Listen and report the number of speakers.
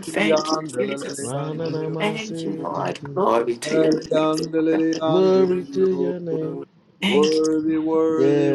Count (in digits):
3